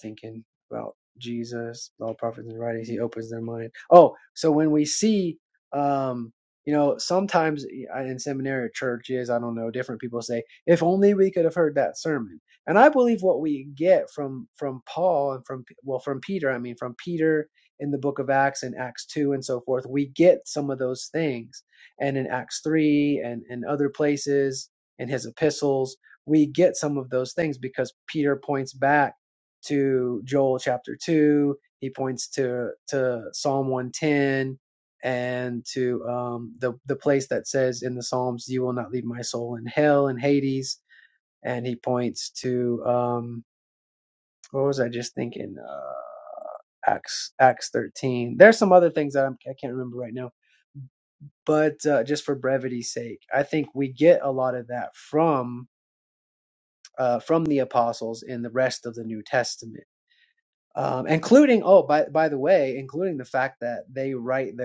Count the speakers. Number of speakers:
one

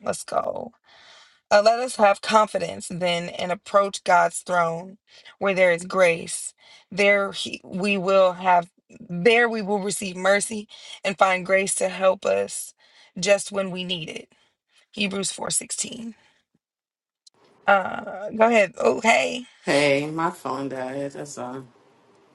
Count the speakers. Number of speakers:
two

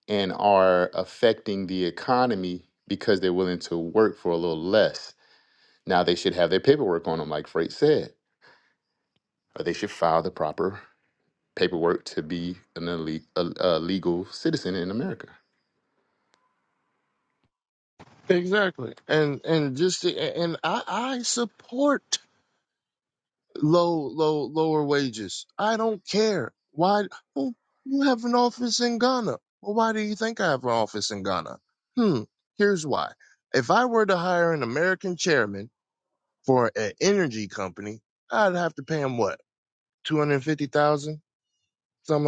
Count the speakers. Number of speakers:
two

